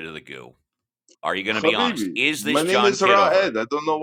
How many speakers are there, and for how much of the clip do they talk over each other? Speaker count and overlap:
2, about 49%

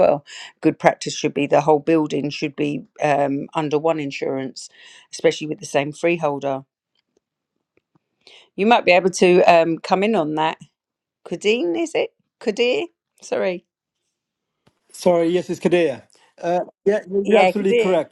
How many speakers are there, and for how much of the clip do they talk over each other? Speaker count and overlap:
2, about 4%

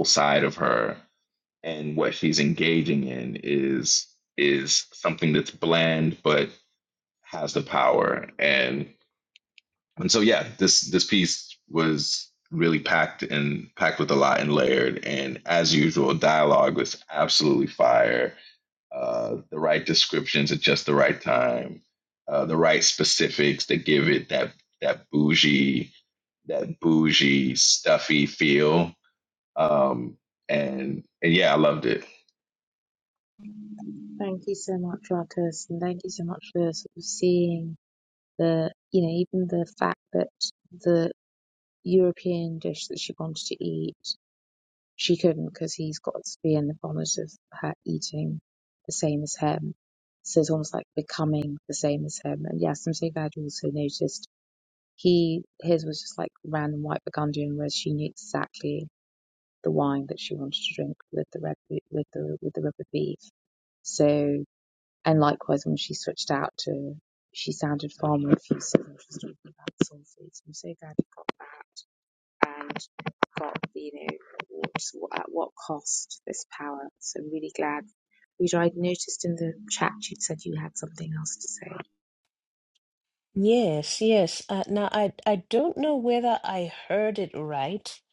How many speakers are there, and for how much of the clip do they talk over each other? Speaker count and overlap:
3, no overlap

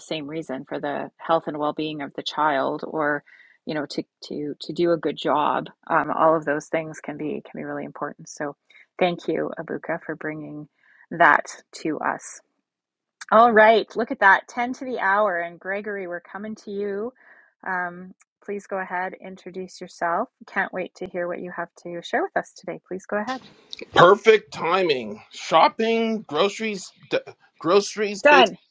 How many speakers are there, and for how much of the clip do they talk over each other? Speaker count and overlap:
2, about 1%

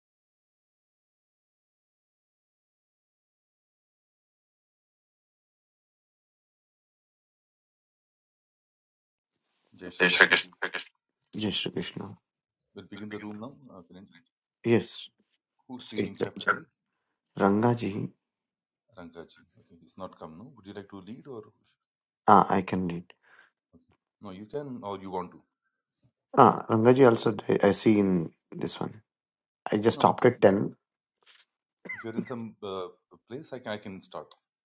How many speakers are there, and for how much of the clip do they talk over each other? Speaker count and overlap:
2, about 5%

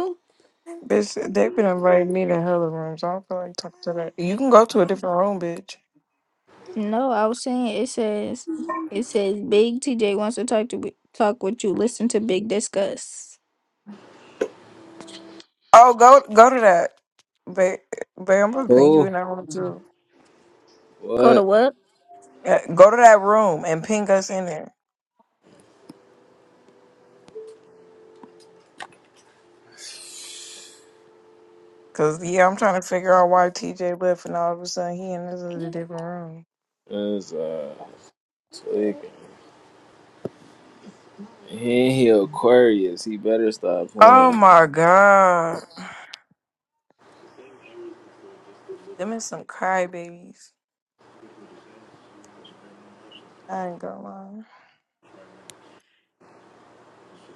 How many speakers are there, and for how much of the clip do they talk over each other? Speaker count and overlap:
3, about 2%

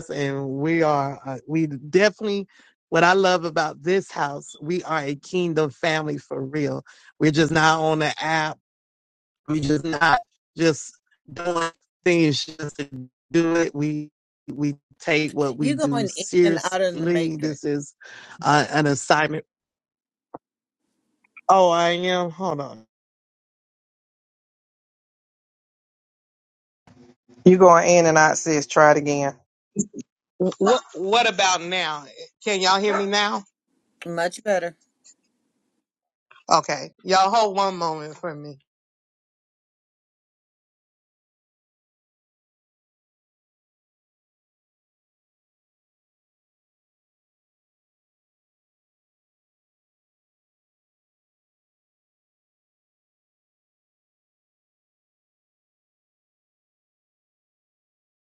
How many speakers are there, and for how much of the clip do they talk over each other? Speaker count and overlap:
4, about 3%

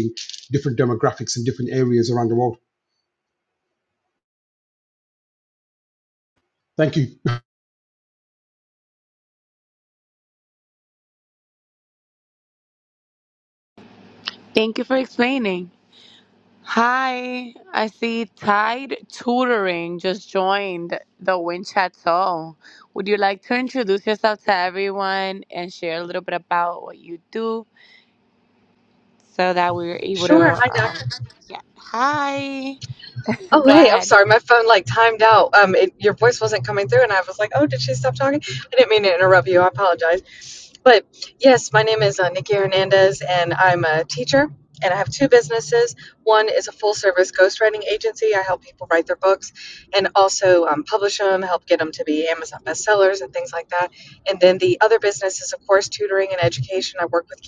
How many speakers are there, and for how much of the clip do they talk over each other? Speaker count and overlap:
3, about 3%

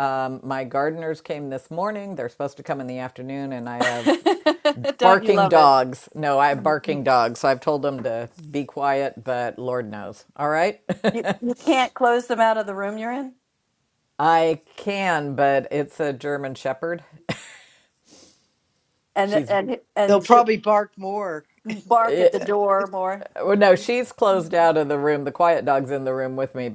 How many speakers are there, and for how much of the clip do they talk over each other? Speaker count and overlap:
3, about 5%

